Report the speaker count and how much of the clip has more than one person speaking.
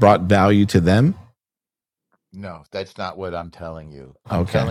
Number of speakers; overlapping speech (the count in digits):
2, about 8%